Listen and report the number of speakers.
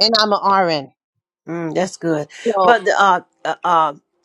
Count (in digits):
2